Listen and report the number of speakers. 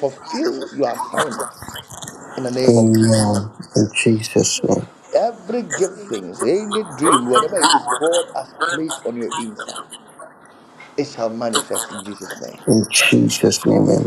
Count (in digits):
2